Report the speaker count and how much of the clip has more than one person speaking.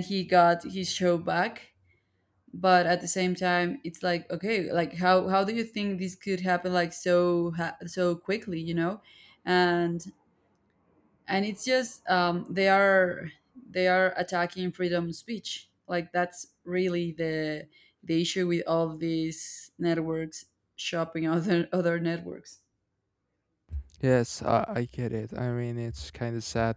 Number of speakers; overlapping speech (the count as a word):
two, no overlap